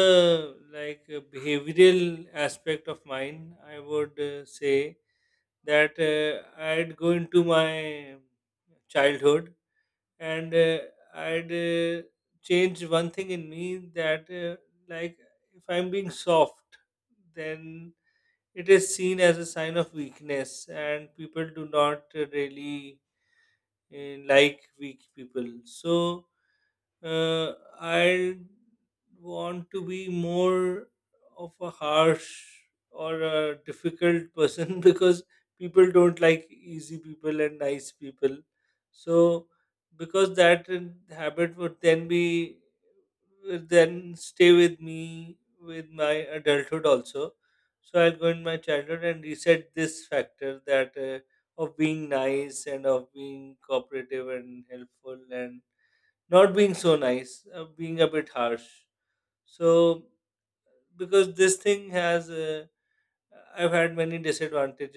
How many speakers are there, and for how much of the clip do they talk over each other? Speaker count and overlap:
1, no overlap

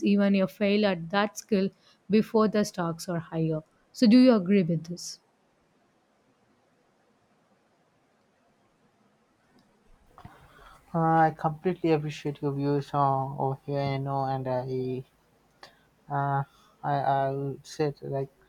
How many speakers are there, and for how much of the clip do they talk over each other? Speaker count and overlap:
2, no overlap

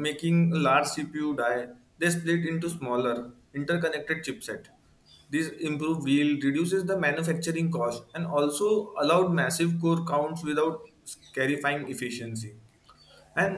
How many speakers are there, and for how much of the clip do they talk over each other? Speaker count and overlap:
1, no overlap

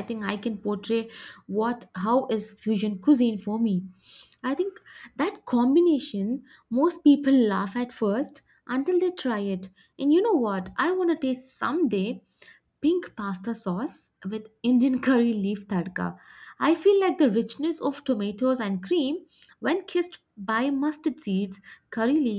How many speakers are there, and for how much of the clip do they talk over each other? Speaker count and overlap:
1, no overlap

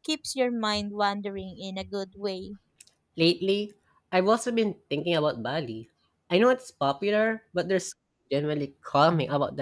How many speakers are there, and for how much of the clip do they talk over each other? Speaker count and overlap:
2, no overlap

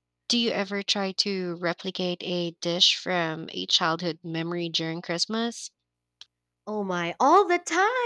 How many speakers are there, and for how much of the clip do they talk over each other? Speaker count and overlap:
2, no overlap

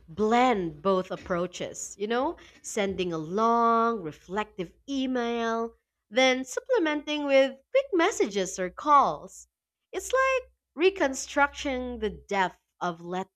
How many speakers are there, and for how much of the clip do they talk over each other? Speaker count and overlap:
1, no overlap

